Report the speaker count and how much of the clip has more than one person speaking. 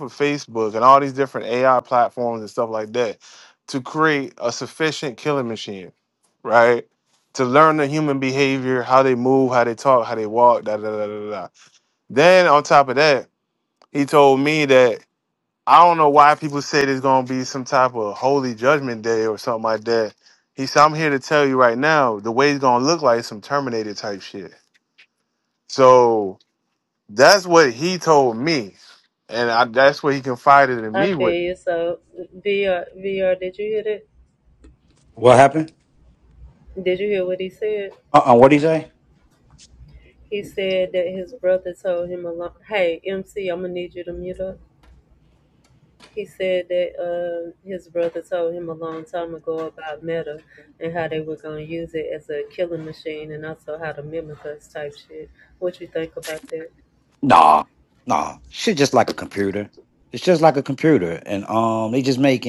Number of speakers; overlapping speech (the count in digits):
3, about 1%